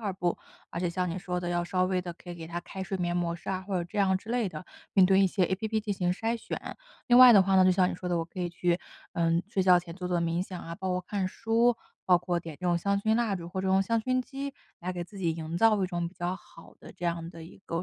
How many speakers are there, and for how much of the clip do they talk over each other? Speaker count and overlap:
one, no overlap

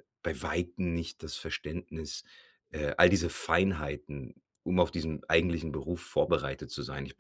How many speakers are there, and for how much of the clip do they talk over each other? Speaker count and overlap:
one, no overlap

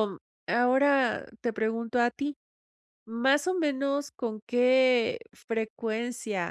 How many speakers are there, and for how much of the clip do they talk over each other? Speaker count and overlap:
one, no overlap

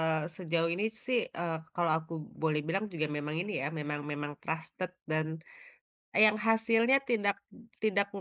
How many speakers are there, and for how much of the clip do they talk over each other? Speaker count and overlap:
one, no overlap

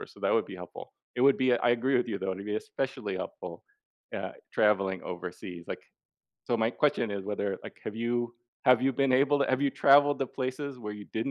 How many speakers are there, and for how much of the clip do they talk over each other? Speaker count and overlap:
one, no overlap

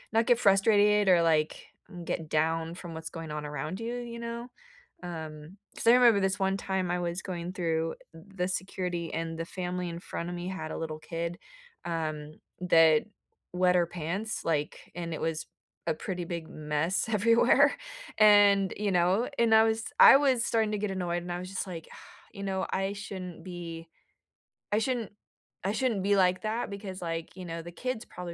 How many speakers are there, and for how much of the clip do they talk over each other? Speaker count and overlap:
one, no overlap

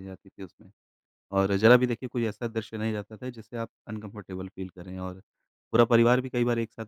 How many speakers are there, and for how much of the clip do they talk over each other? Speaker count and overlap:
one, no overlap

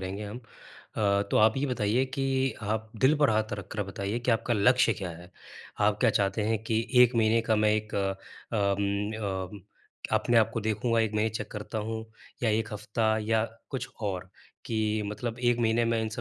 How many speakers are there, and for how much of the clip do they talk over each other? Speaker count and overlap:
one, no overlap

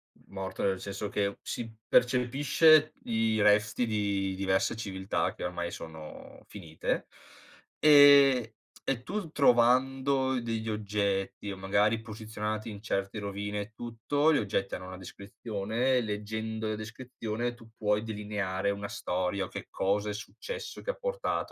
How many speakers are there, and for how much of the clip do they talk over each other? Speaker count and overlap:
one, no overlap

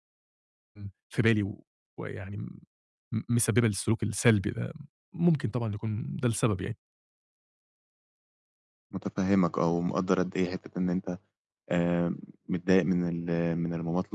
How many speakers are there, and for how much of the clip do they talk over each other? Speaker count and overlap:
two, no overlap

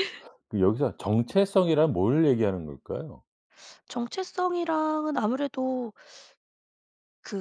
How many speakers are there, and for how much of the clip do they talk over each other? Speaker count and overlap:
two, no overlap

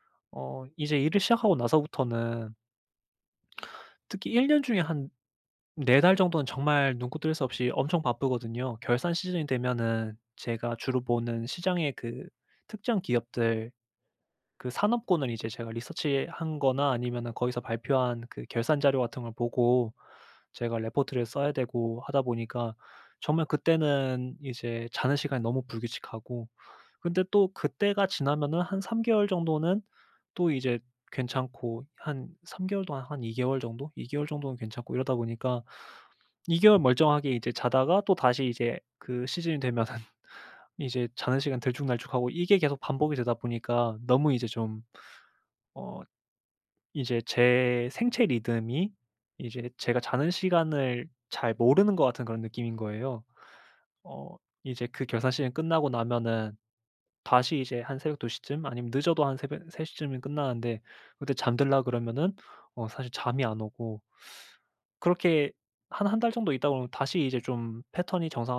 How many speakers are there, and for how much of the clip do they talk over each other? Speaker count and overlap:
one, no overlap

